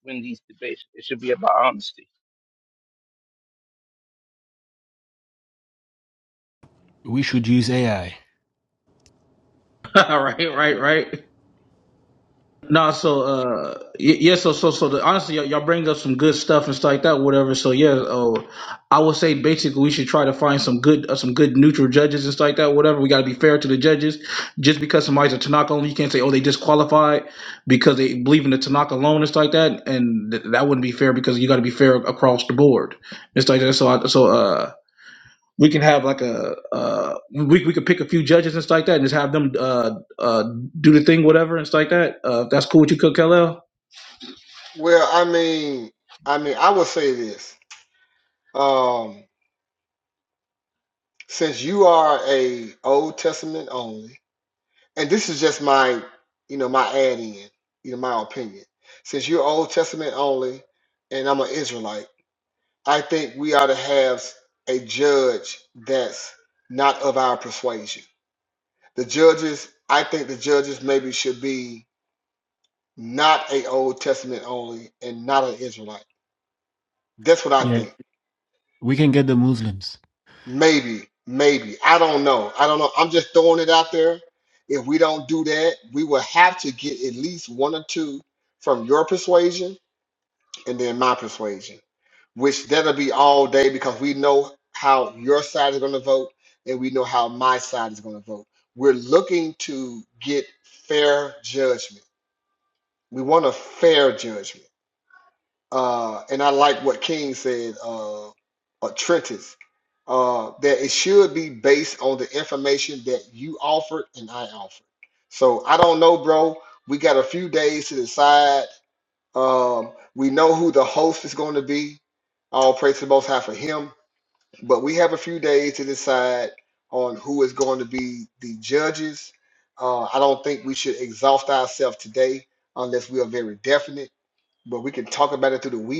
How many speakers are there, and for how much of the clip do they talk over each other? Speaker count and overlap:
four, under 1%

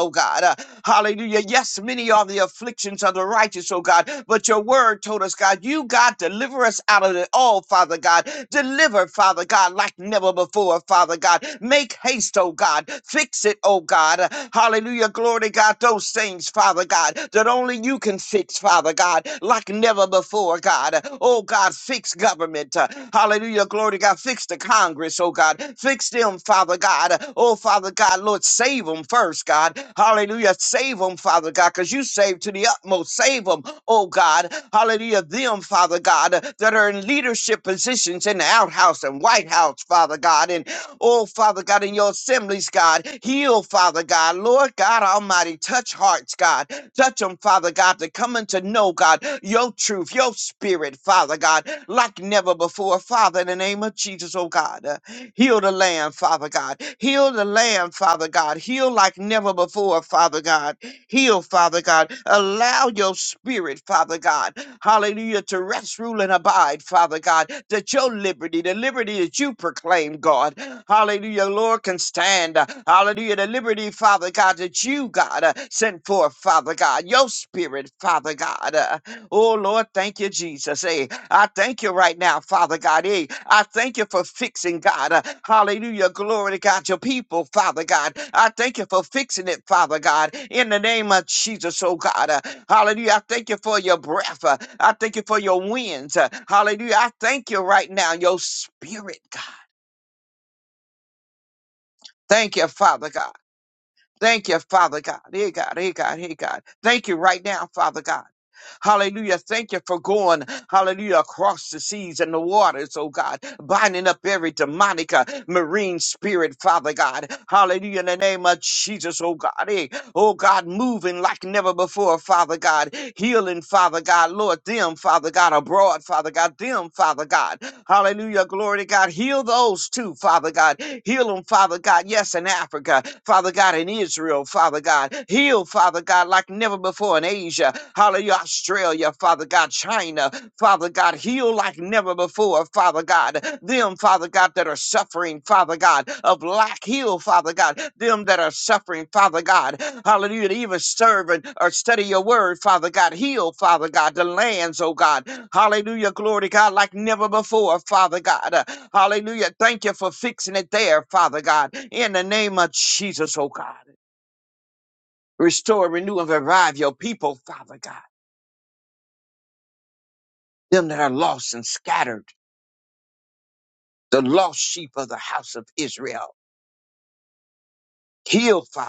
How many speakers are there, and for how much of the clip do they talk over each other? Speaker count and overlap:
one, no overlap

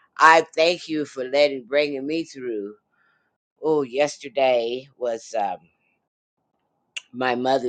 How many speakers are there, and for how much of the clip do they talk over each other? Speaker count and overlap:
one, no overlap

